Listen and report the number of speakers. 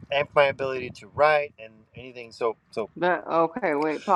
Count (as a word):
two